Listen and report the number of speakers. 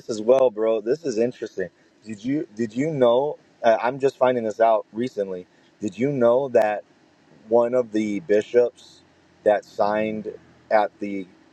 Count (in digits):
1